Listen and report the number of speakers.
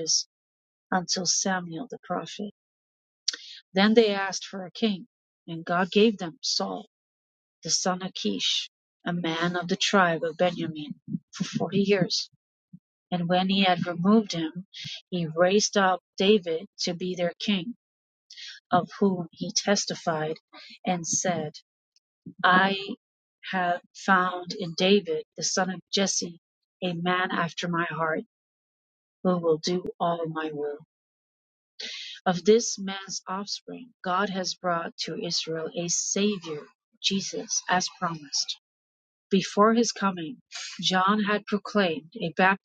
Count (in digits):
1